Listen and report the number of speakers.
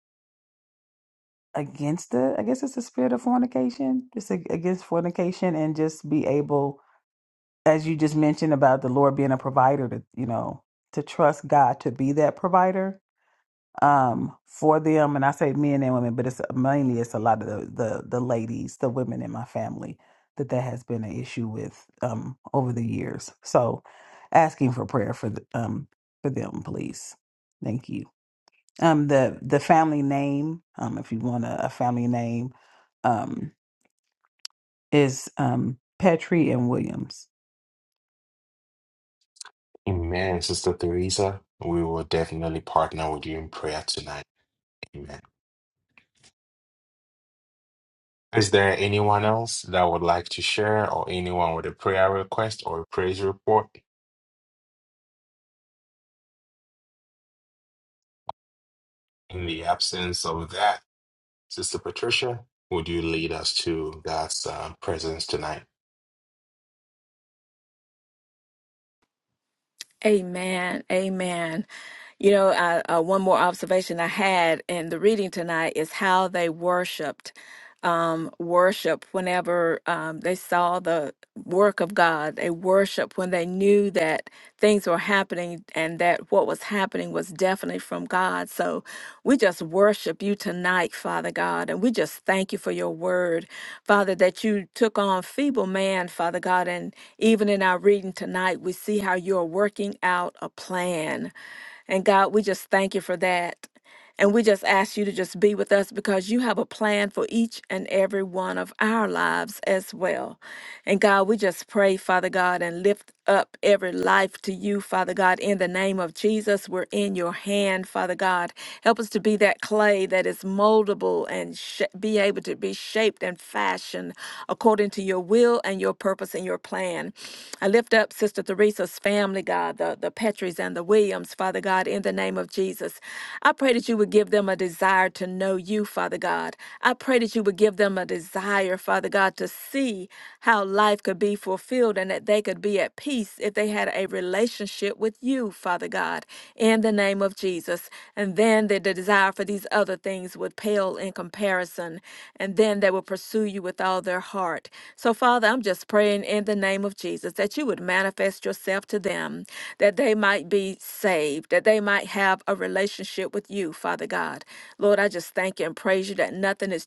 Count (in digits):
3